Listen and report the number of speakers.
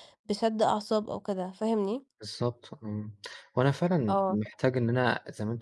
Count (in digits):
2